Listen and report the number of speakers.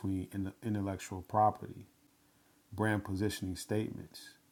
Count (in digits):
1